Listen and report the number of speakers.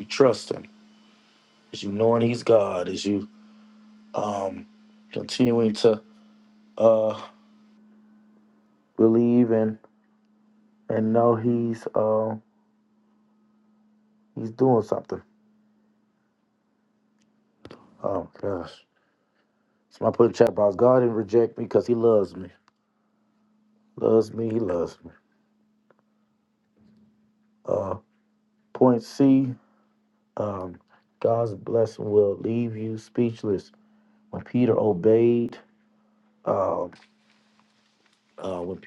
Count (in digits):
1